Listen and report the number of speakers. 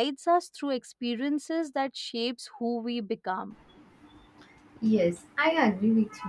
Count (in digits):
2